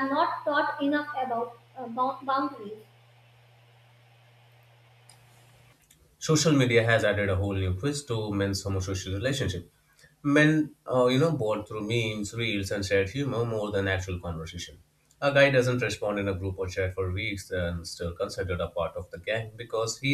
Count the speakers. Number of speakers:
two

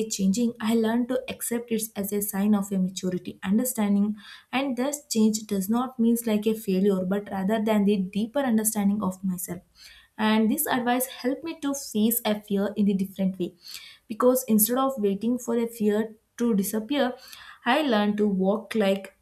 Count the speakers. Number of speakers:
one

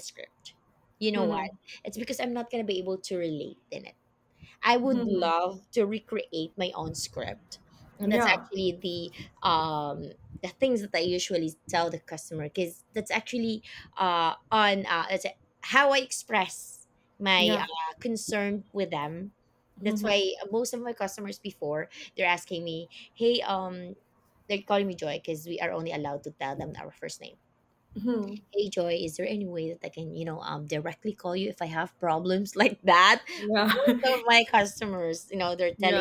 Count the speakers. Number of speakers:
two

